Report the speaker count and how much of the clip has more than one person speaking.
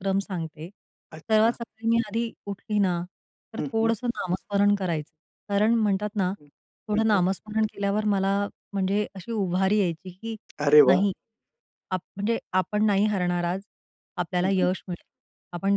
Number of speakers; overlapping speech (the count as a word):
two, about 9%